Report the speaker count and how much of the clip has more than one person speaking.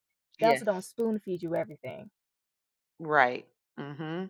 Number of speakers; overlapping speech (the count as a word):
two, about 5%